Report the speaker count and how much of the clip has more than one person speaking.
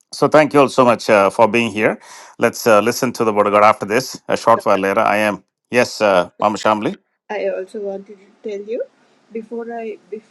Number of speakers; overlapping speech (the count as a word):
two, no overlap